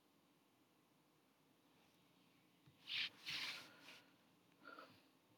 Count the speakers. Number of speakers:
zero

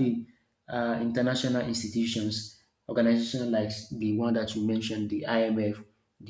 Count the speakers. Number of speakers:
one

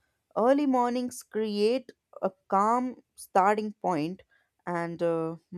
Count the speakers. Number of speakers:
one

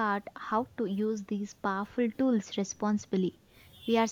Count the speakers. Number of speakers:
one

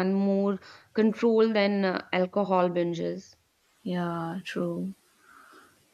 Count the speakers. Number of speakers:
two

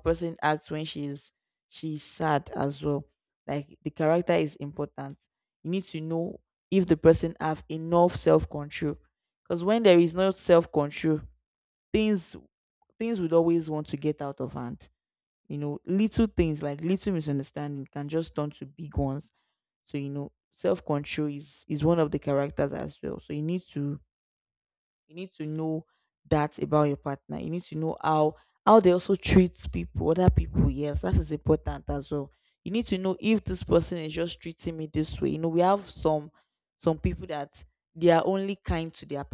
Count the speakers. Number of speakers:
one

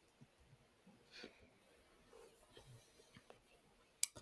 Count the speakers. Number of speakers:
zero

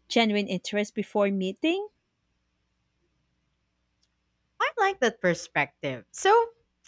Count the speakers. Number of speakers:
two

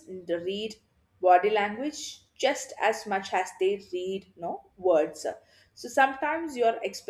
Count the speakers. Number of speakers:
one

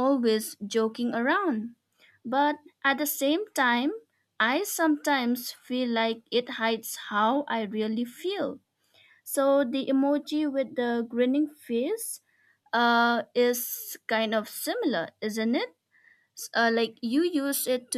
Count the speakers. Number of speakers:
one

